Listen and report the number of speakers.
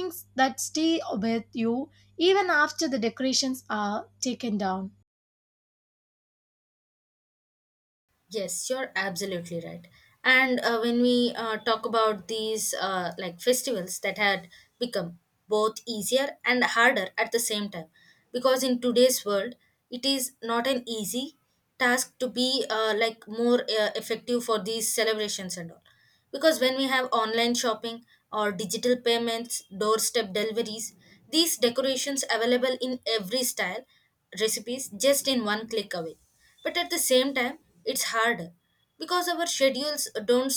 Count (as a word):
two